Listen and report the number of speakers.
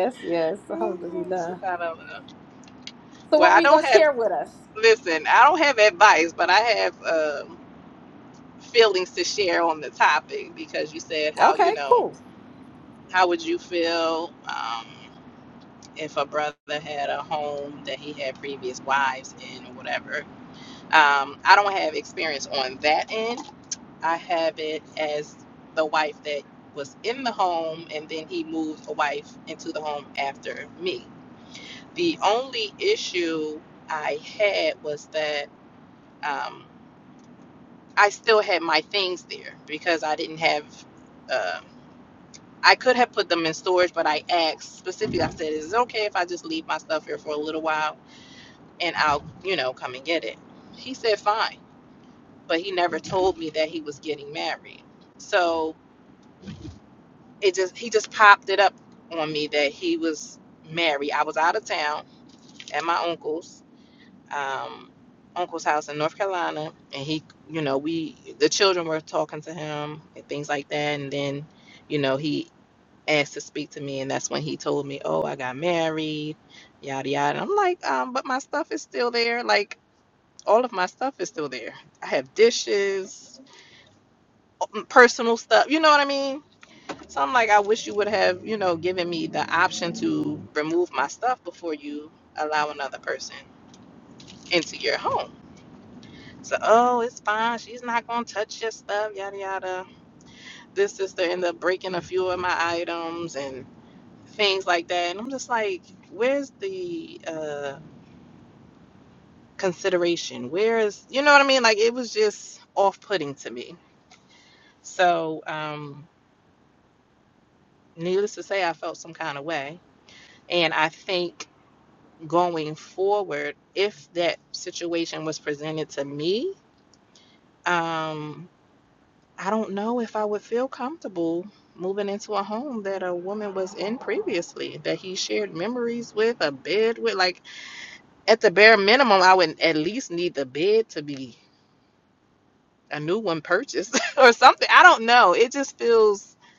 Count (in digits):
2